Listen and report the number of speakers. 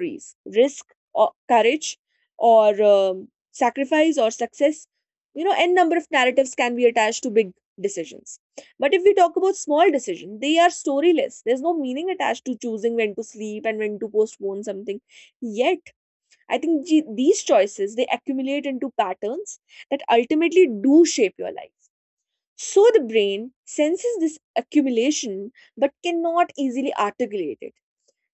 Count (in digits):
1